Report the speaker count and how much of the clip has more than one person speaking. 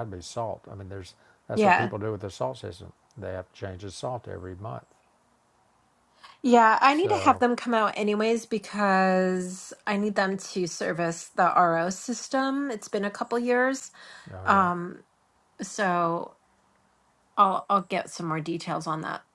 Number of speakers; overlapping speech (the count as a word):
two, about 5%